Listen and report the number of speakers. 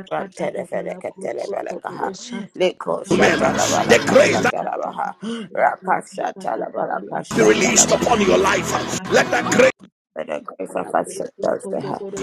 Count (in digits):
3